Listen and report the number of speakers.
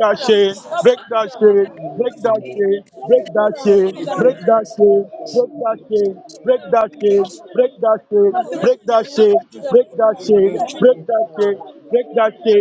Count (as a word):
two